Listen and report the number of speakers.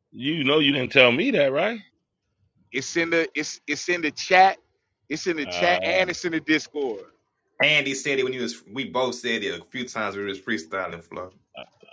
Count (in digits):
3